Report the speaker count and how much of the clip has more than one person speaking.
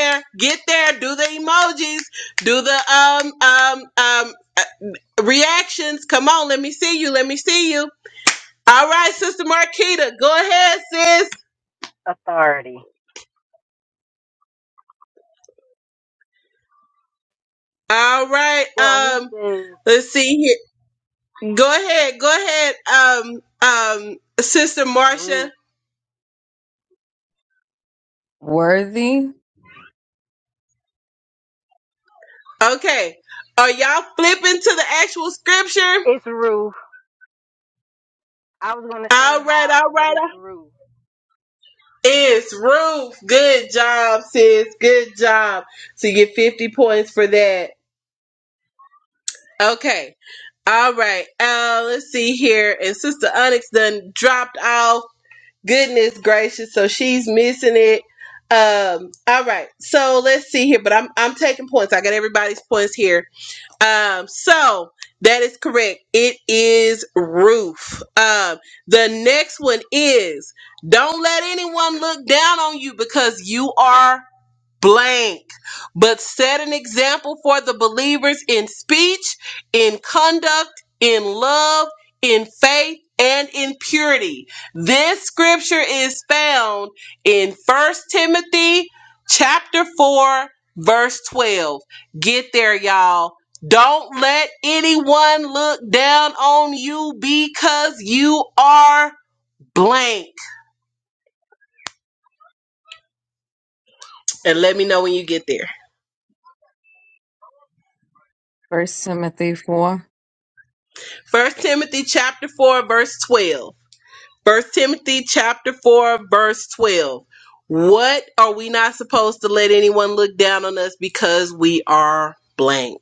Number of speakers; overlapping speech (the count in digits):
3, about 2%